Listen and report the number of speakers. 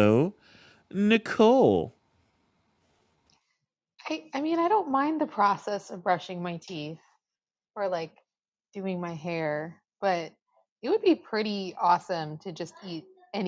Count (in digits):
2